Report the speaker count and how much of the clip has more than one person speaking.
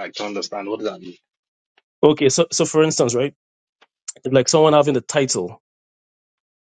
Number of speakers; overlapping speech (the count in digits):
2, no overlap